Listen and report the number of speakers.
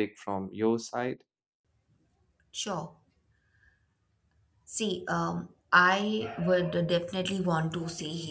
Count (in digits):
2